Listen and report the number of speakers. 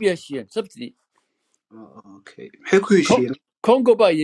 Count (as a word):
two